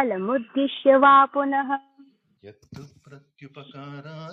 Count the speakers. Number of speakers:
two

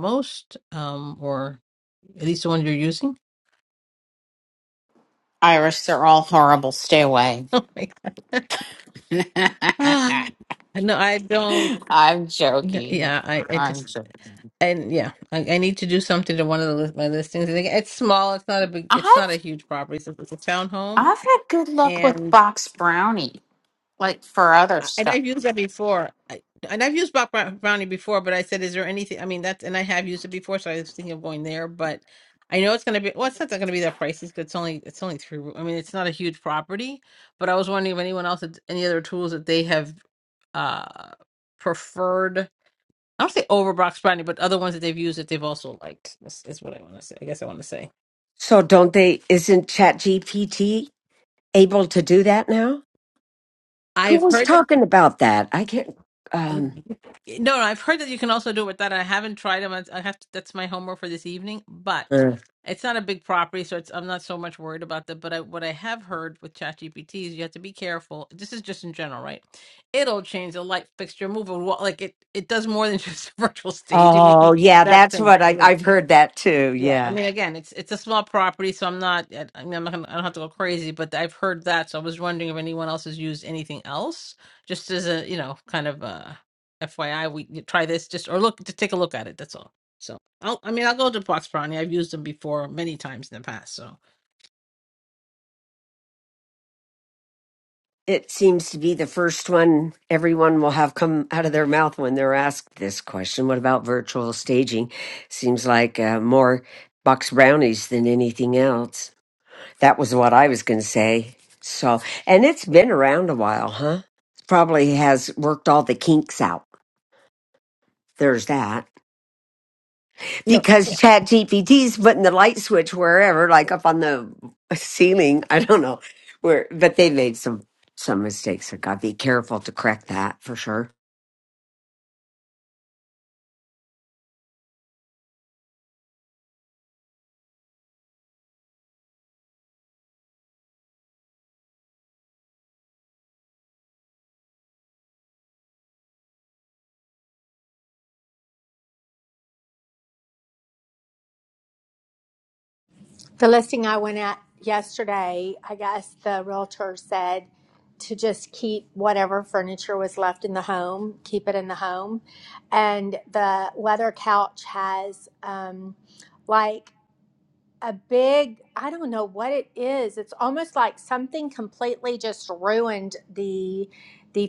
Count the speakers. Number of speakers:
four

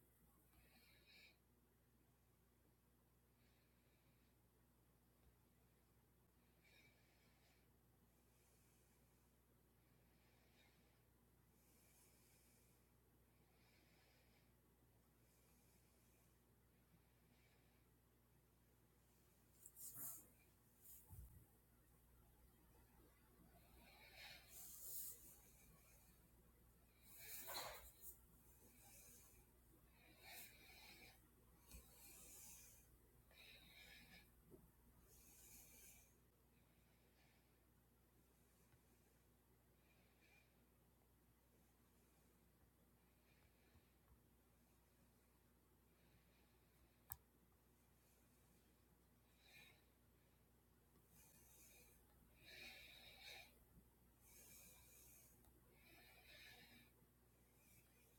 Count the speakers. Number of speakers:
zero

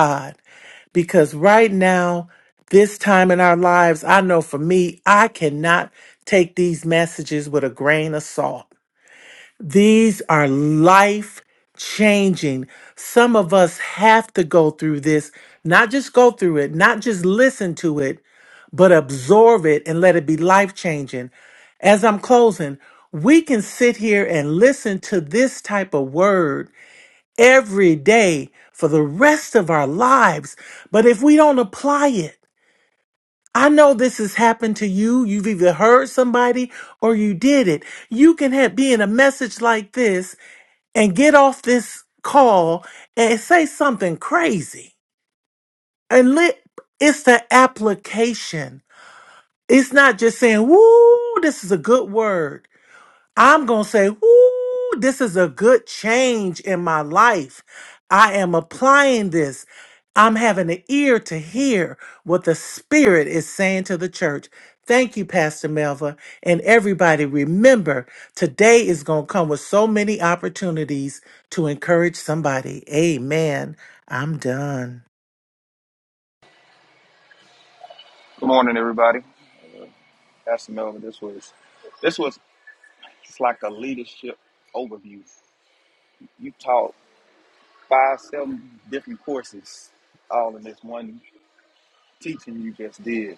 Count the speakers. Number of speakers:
two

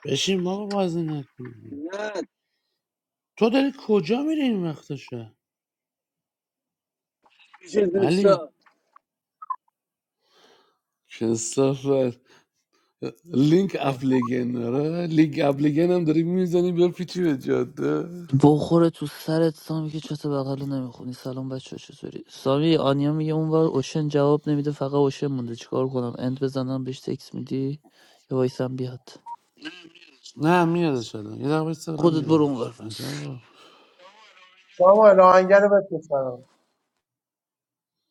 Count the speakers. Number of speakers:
four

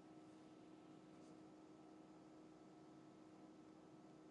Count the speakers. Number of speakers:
zero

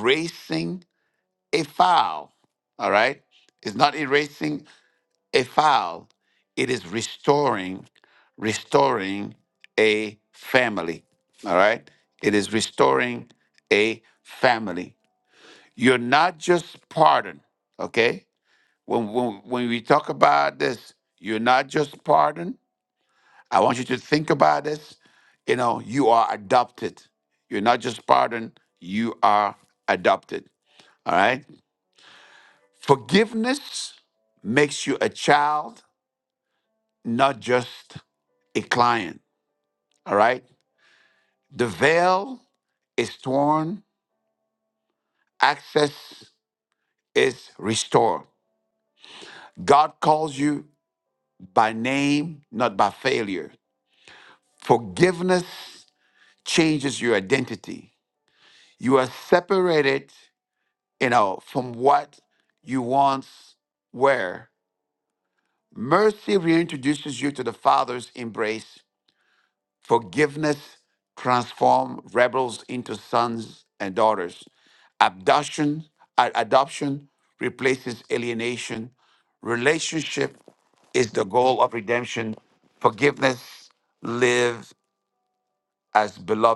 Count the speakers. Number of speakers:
one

